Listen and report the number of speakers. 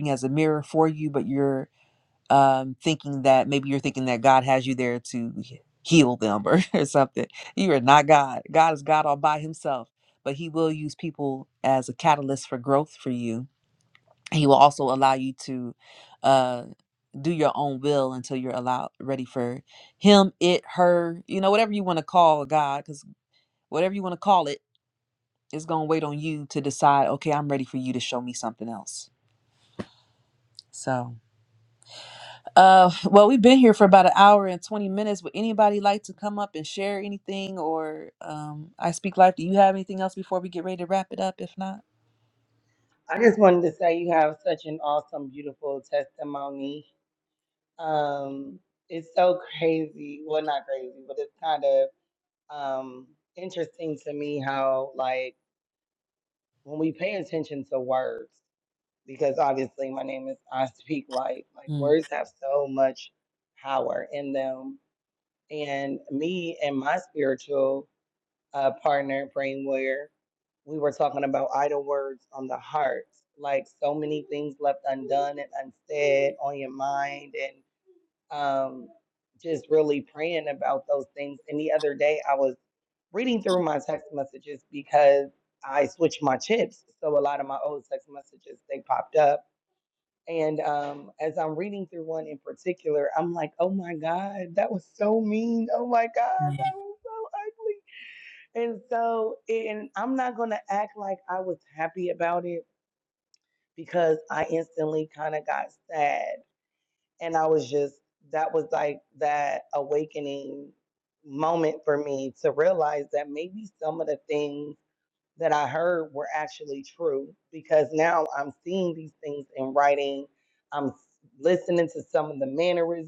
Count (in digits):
2